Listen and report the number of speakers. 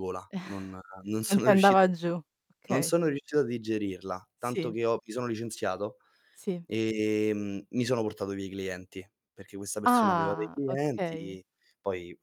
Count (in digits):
2